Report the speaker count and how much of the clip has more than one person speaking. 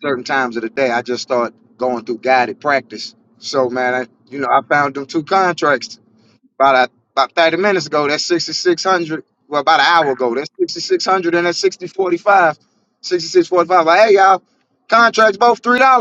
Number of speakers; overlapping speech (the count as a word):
one, no overlap